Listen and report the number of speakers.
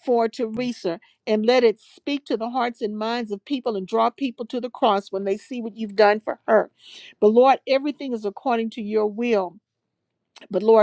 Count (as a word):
one